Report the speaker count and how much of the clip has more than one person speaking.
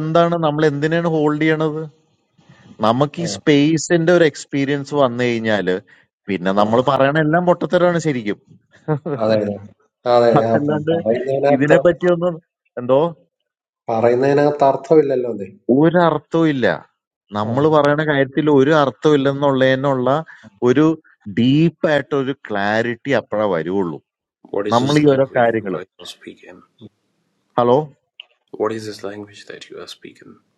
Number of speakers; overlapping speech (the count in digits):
3, about 7%